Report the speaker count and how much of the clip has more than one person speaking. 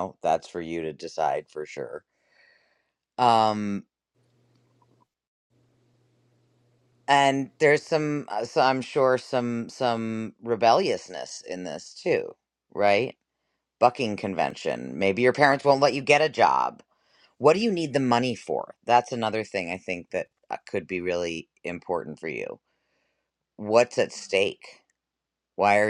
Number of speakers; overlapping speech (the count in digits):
1, no overlap